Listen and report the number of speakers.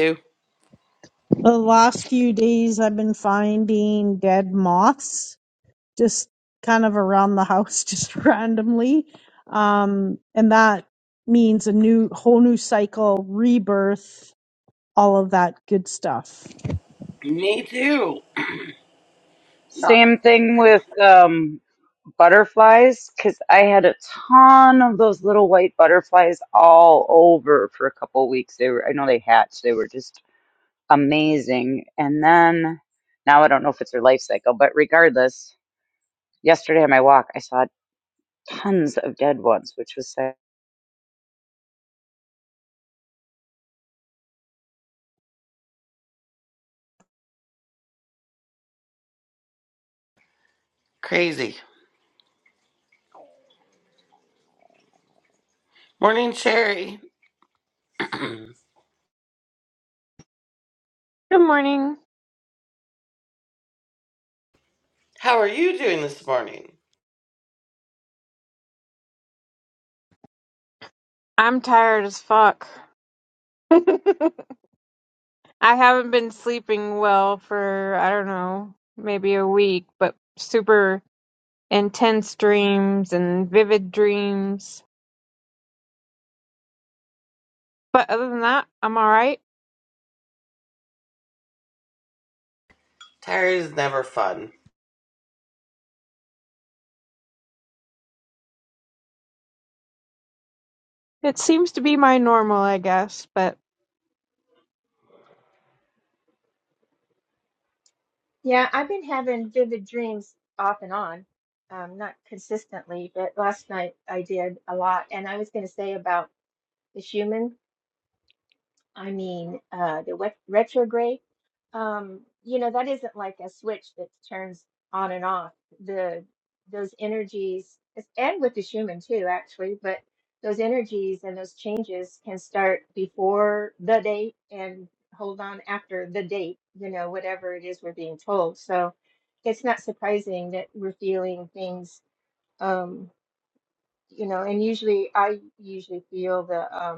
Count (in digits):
5